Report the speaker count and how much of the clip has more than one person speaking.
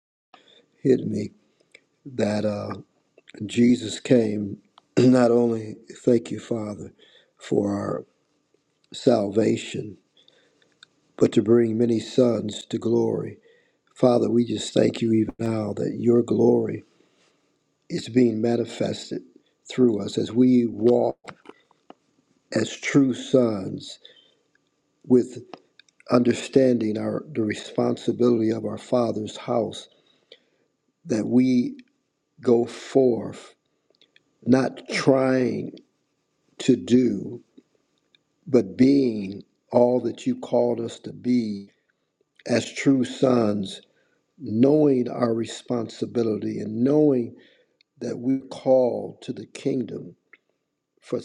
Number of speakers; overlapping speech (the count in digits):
1, no overlap